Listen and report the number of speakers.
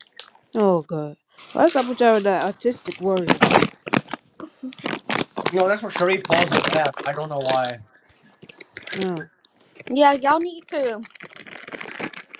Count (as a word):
three